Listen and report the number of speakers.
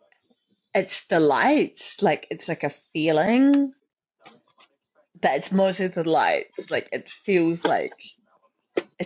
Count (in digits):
1